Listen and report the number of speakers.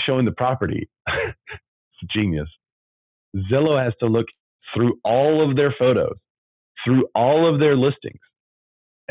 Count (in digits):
1